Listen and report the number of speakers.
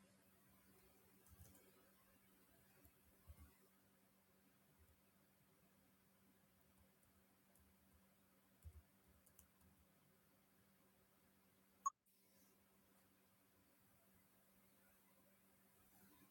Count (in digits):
0